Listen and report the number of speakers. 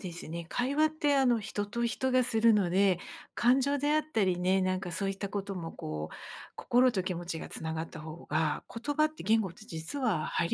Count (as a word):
one